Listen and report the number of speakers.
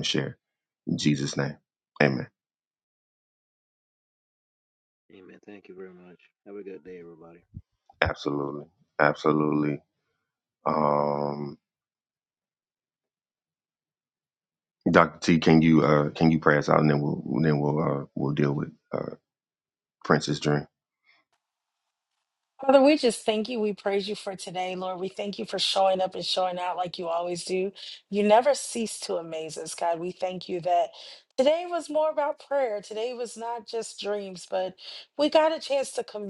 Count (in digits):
3